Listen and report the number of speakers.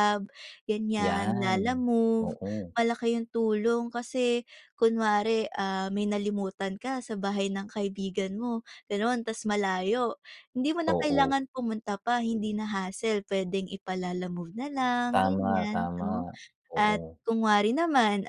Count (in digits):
2